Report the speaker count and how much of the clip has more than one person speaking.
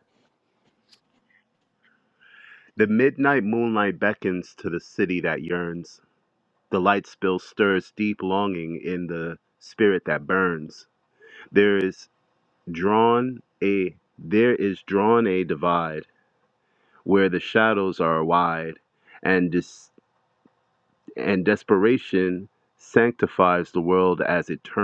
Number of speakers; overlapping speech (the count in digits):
1, no overlap